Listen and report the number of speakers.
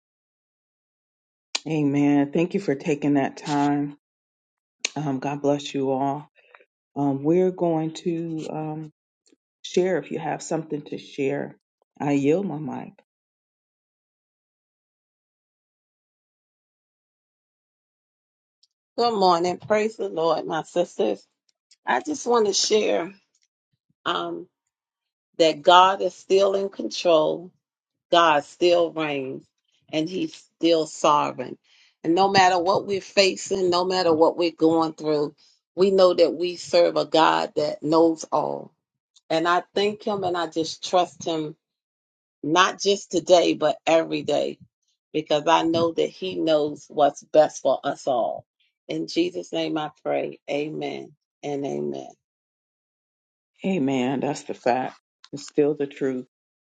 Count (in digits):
2